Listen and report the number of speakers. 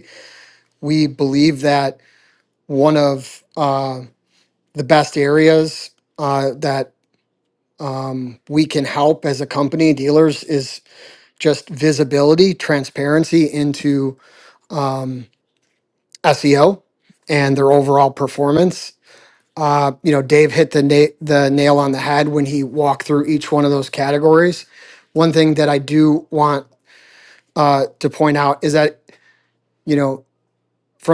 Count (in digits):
1